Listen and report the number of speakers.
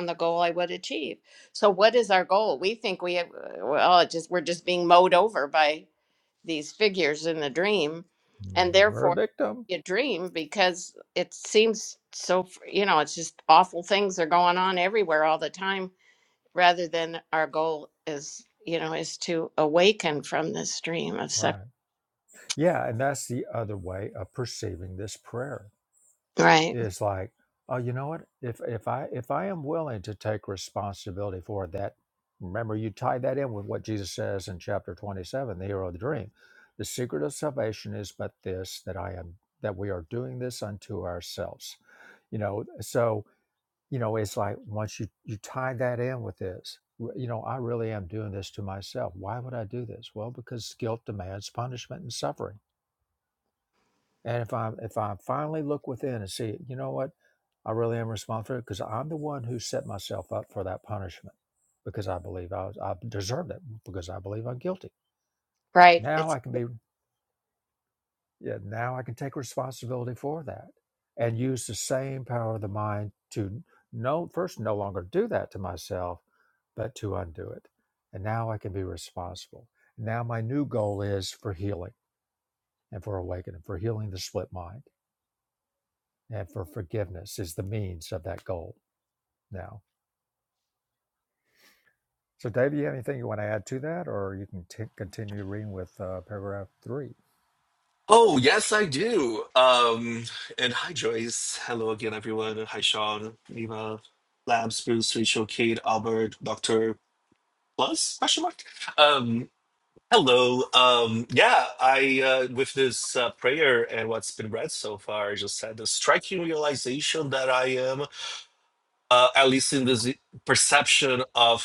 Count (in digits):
3